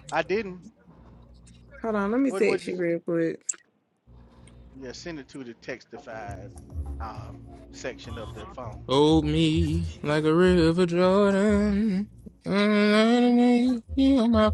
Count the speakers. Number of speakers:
three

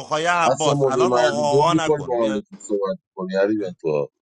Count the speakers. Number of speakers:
two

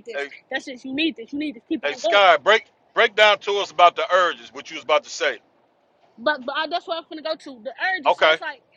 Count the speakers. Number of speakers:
two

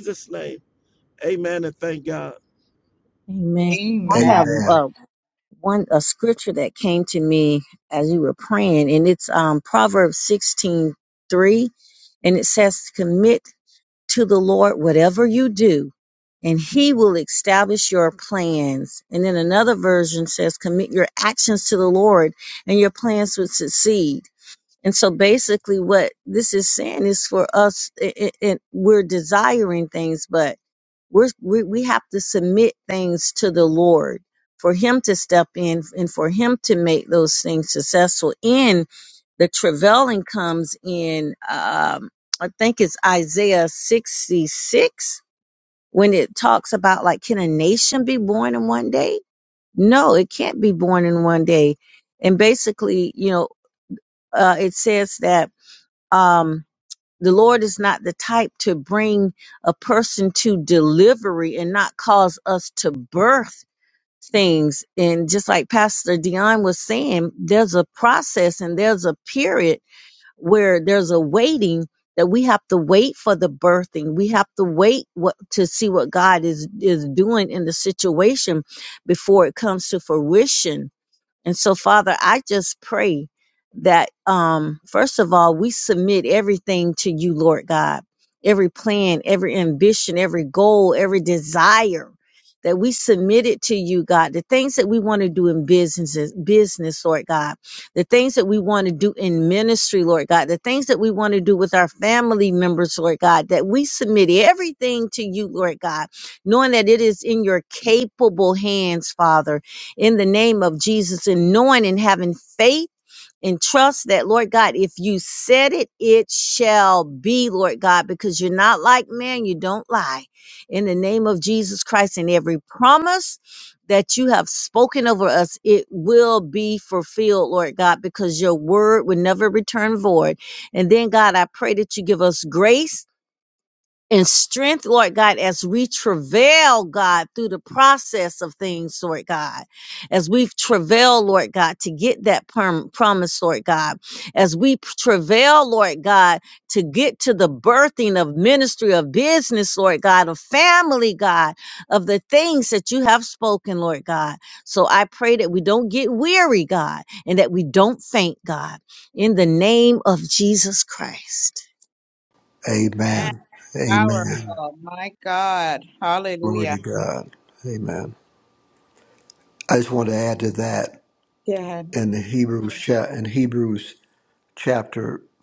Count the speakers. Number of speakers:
four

